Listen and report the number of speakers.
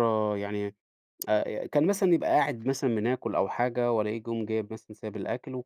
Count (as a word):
one